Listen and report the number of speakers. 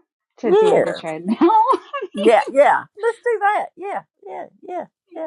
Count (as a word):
two